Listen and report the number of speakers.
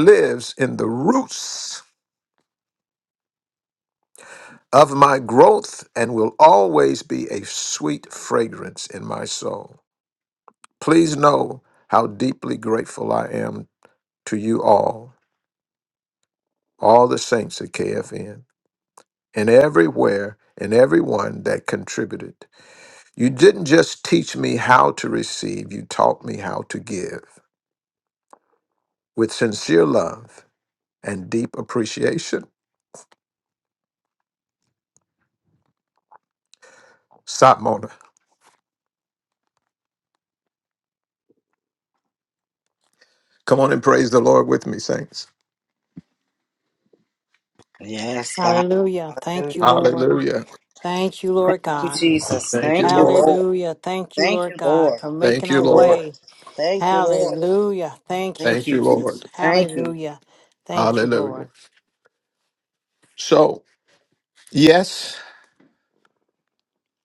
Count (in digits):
3